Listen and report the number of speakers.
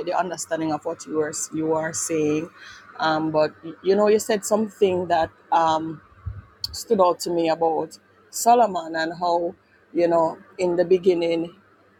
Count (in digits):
1